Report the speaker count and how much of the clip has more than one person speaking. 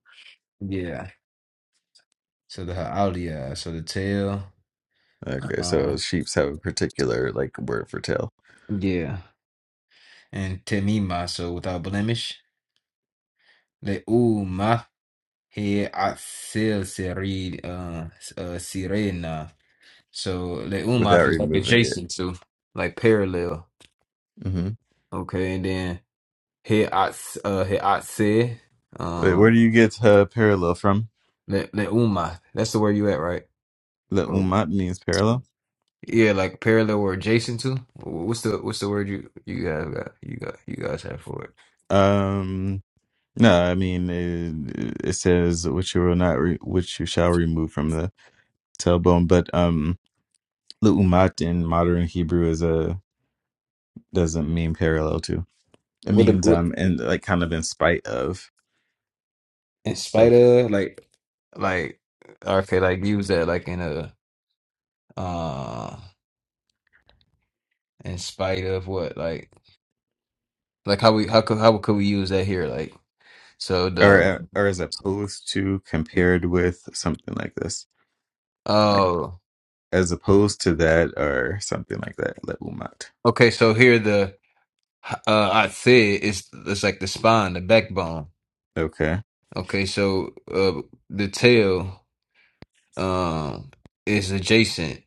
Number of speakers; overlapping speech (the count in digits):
2, about 3%